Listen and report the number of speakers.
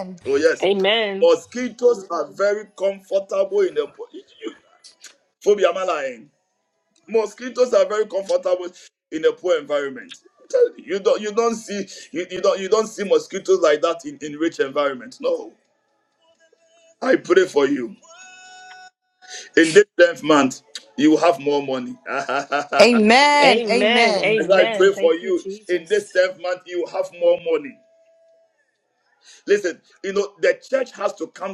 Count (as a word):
three